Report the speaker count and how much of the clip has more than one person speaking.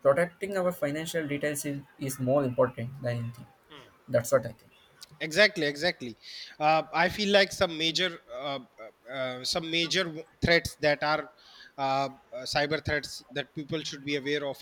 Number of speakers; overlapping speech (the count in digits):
2, no overlap